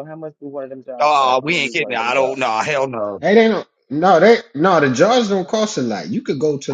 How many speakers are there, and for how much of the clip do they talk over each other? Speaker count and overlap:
three, about 22%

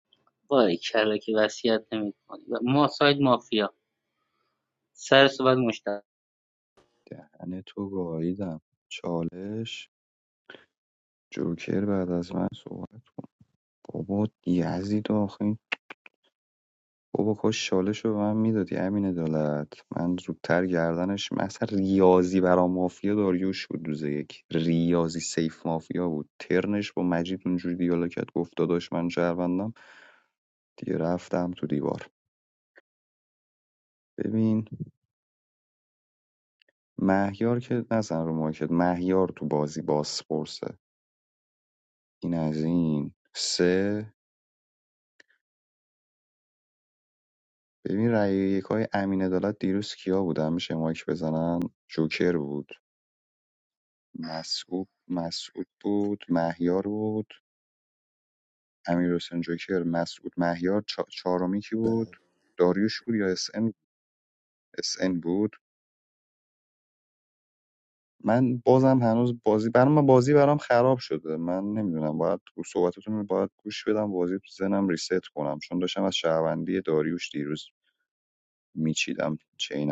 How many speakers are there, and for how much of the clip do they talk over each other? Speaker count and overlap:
two, no overlap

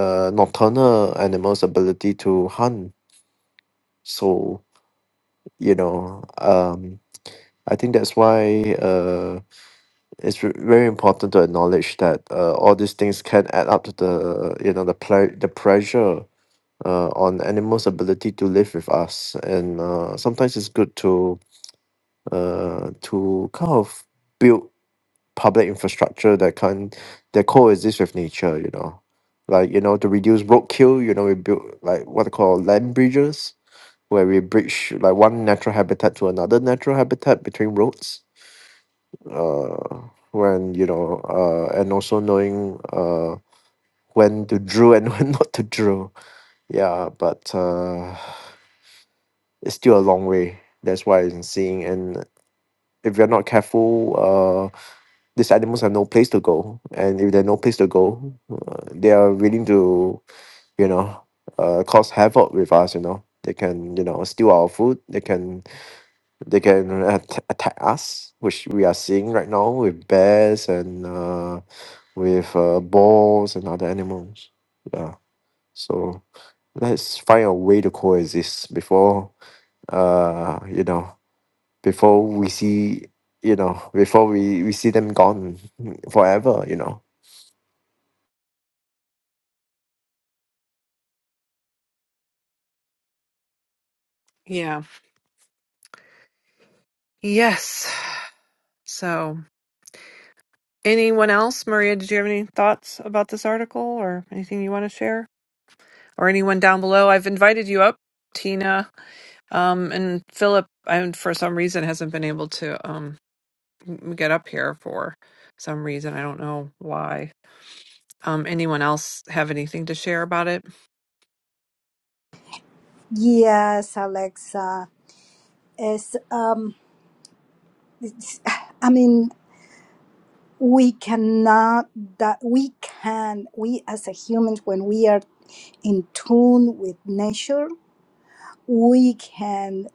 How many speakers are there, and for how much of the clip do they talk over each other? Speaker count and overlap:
three, no overlap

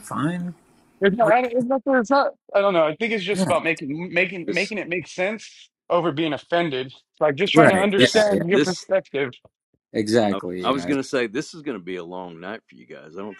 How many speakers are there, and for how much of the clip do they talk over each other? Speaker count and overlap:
three, about 19%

